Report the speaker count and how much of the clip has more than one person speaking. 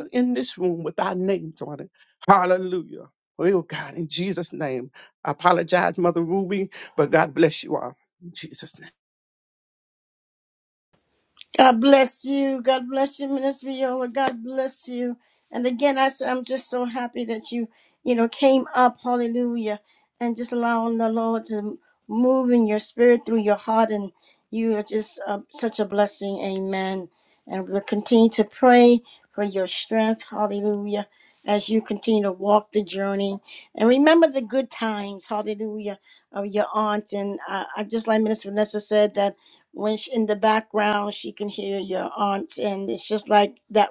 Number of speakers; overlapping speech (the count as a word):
two, no overlap